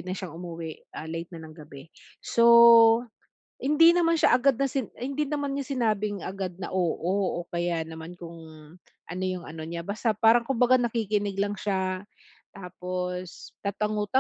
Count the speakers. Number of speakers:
one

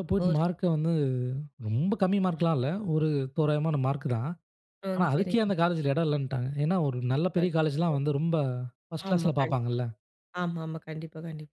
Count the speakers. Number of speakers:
two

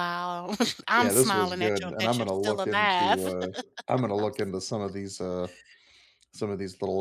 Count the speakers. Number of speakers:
two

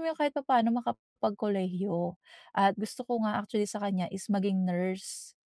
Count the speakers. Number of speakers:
one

